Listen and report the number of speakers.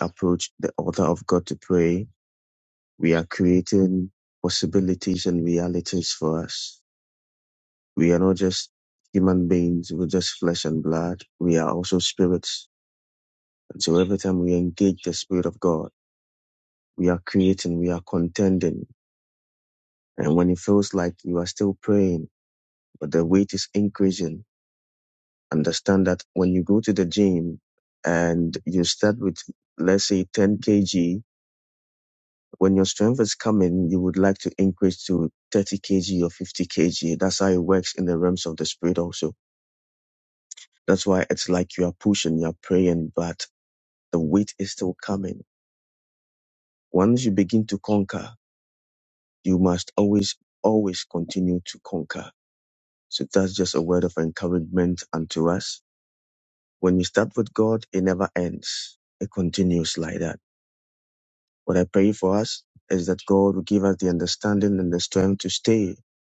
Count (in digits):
1